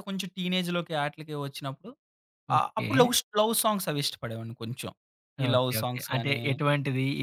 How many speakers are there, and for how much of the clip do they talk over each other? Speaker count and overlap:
two, about 20%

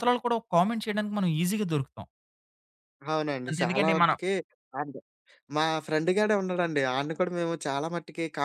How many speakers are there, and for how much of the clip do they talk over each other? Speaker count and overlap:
two, about 9%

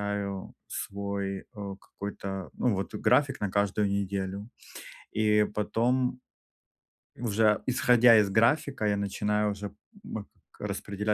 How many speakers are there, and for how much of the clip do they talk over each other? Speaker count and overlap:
one, no overlap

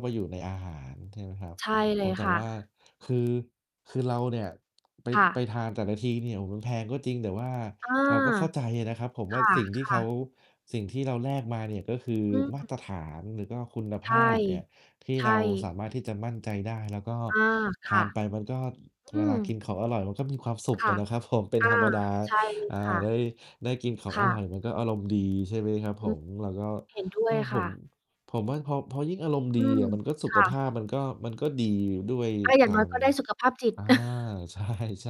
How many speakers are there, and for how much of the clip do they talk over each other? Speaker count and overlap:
two, about 13%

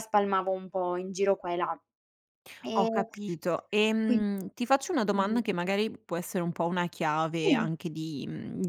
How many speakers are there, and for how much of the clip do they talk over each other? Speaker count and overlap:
two, about 9%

